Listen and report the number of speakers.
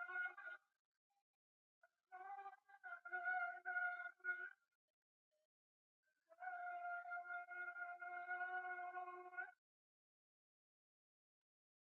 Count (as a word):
zero